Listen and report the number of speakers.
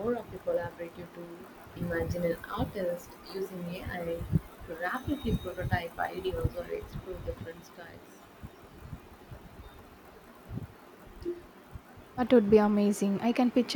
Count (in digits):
2